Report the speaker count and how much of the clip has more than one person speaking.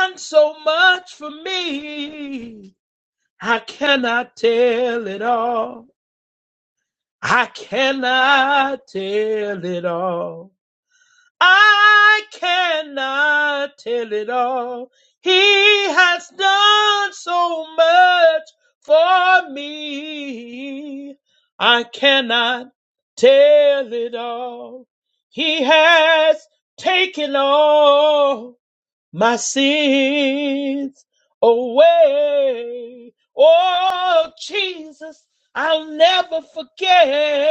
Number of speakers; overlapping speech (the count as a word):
one, no overlap